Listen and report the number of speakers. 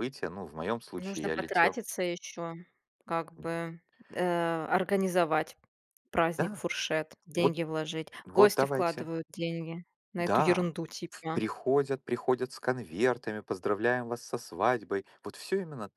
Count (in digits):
2